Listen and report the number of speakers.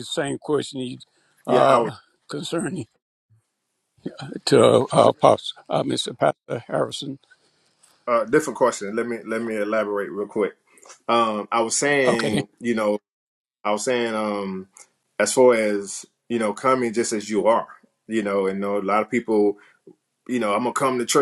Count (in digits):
2